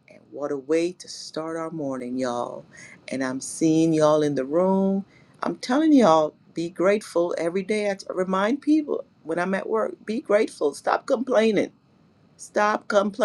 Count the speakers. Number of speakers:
1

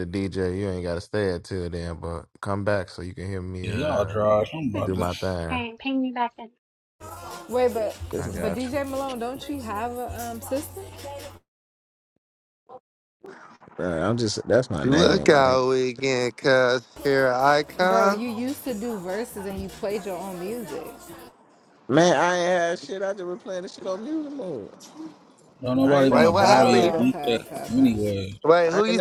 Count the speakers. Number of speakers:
6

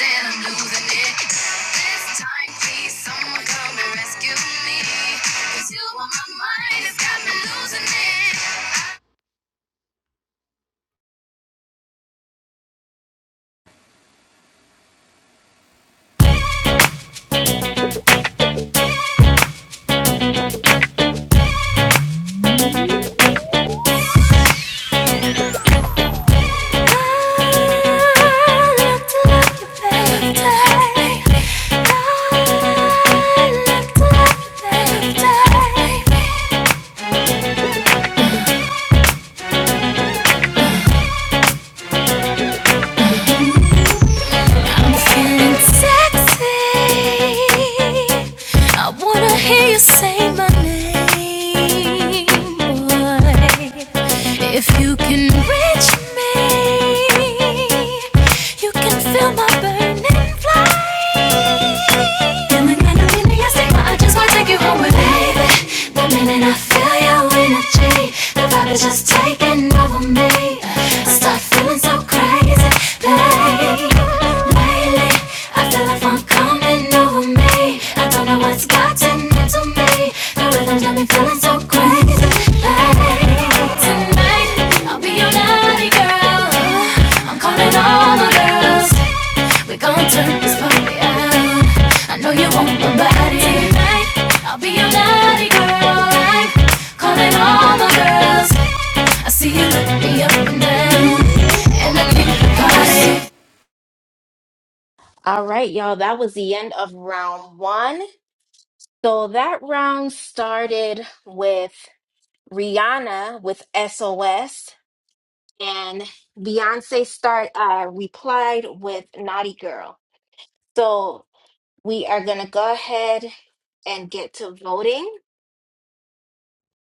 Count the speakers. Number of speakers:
3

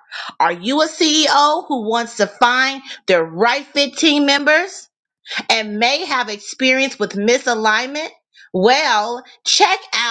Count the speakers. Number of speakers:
1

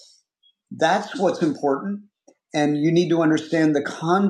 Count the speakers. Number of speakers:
1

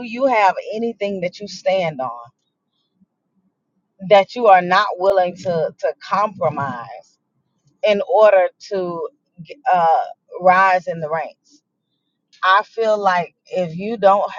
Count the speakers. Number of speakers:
1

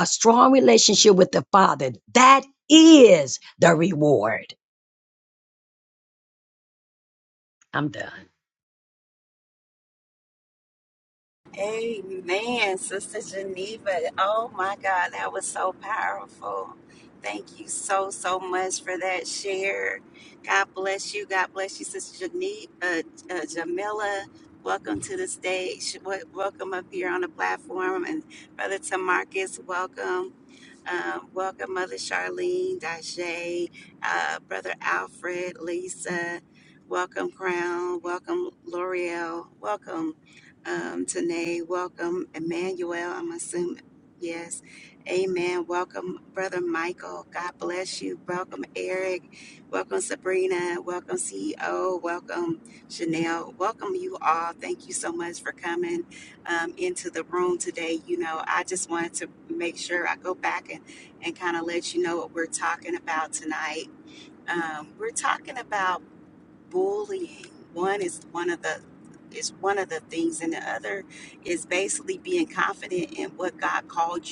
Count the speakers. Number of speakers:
2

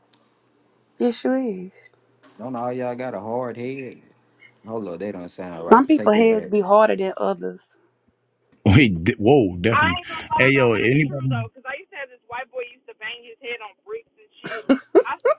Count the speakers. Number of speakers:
4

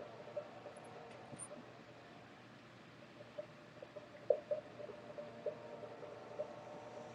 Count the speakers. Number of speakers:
0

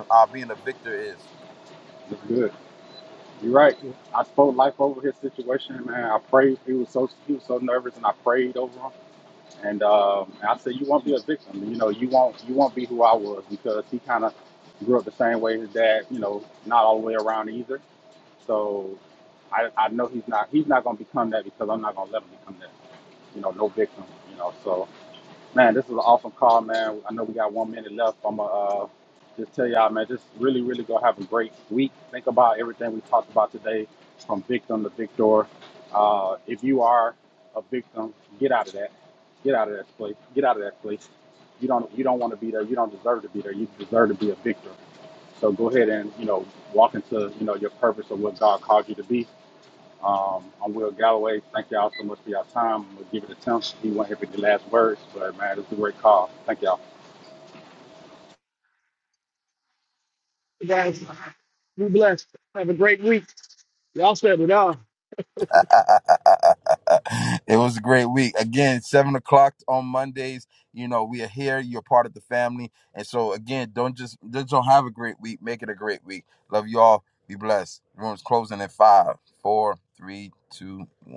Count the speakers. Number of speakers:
3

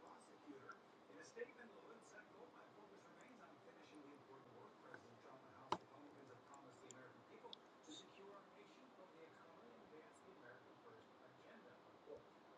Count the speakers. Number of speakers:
0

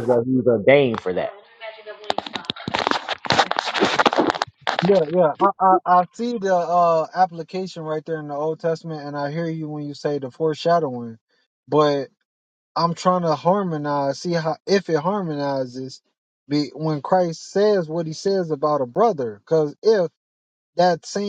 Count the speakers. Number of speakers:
2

